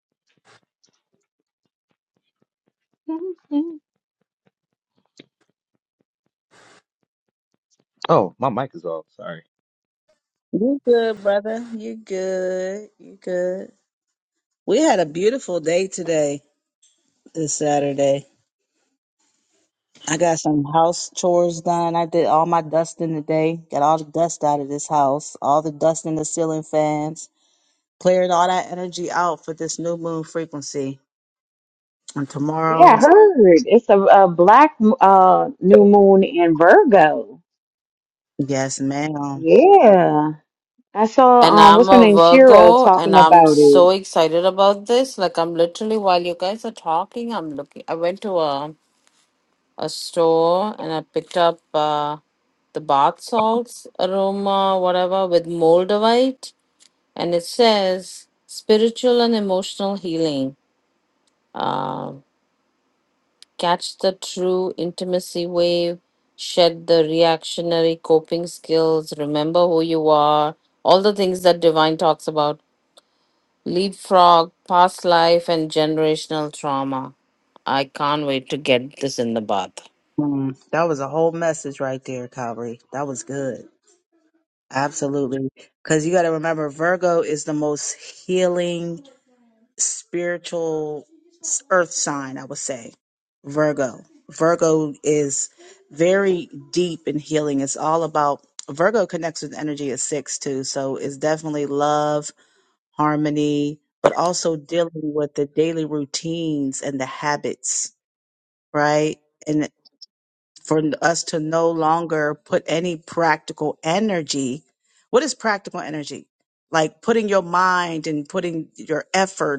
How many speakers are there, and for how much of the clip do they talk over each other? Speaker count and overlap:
4, about 2%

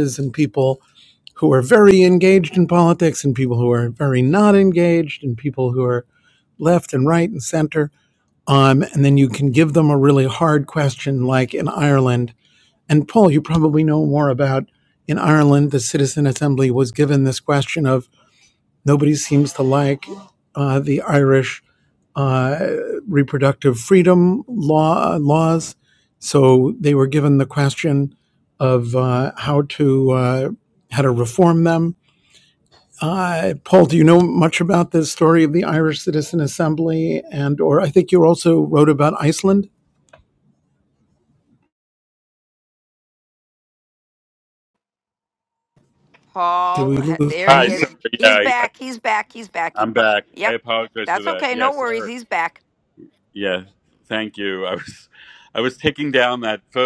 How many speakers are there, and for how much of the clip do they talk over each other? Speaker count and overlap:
3, about 6%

